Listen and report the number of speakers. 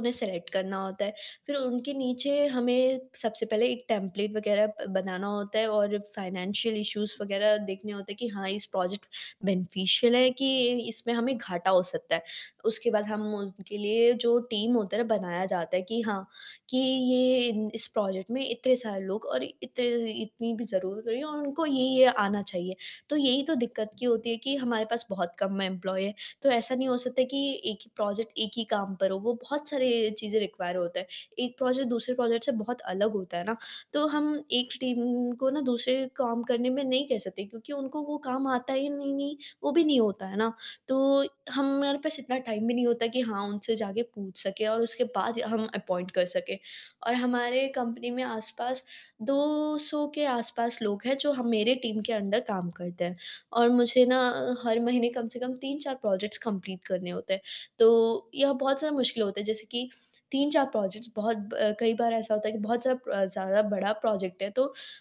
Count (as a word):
one